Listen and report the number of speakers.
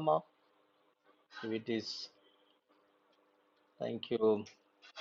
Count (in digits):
1